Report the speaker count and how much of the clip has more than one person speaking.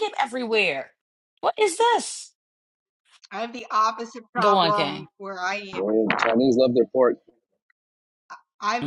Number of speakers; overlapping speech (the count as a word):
three, about 10%